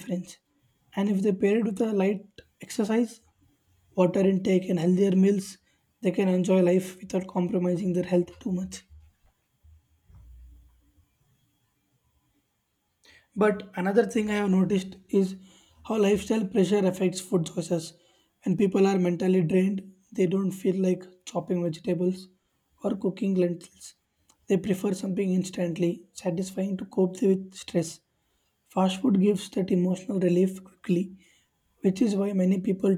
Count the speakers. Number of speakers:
one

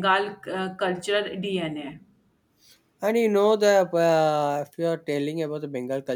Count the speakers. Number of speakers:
two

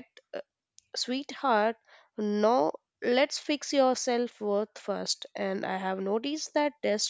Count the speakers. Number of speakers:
one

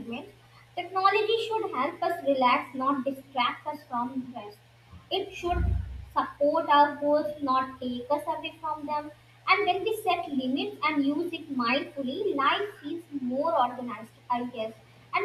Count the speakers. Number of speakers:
one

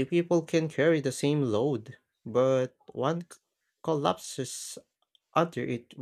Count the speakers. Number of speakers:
one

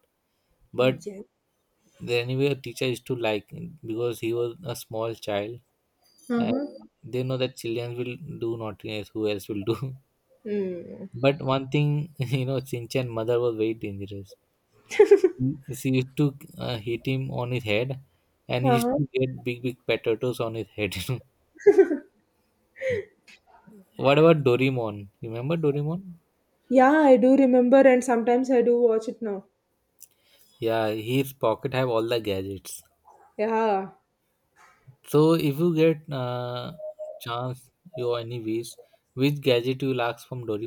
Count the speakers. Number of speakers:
two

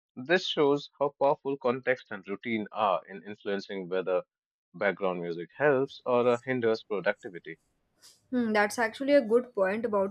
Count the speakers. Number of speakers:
two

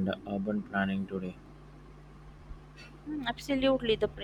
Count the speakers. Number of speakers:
two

